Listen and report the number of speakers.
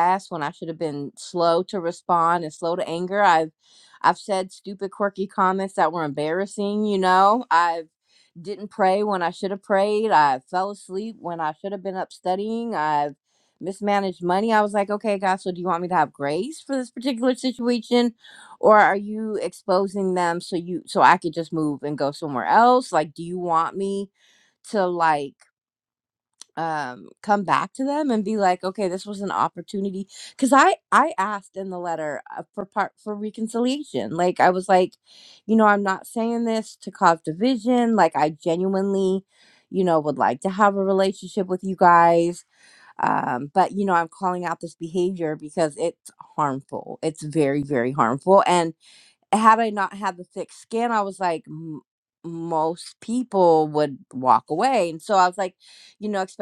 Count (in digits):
1